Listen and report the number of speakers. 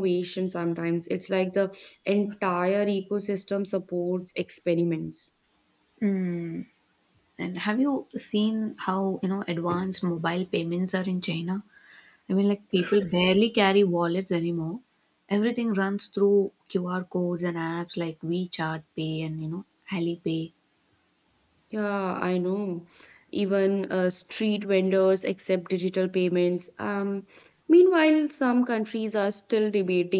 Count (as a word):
two